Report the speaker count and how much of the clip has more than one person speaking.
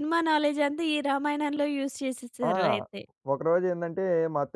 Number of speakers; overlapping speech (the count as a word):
two, about 3%